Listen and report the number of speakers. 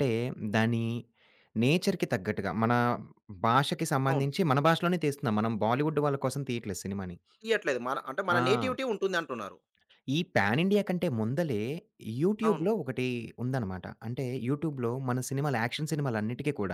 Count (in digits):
2